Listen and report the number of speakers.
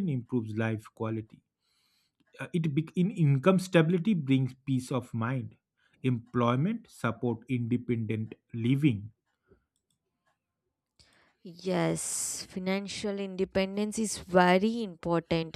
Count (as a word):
two